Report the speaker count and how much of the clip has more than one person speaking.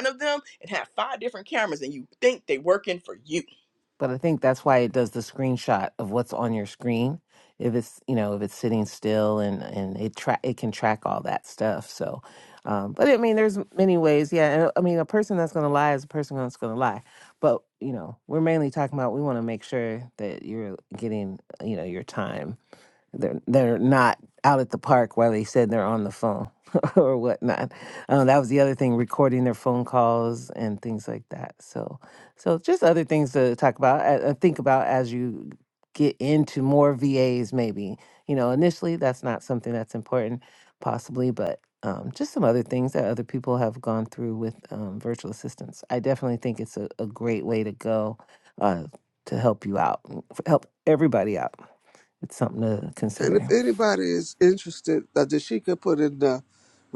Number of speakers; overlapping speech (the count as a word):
three, about 1%